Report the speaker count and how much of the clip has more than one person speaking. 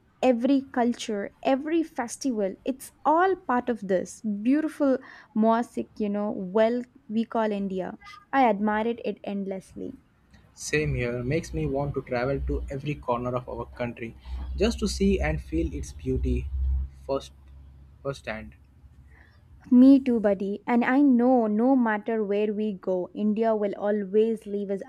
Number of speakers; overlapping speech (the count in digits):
2, no overlap